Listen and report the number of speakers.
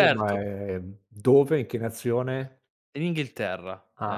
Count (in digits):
2